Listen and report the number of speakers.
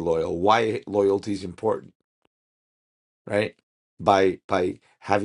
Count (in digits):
1